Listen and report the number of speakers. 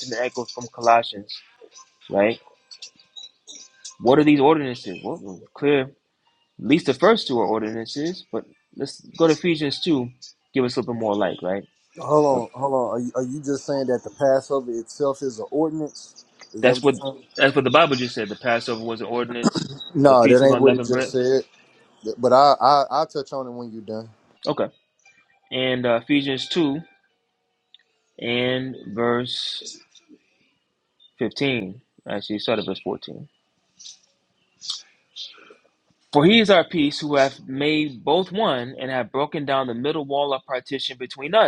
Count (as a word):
two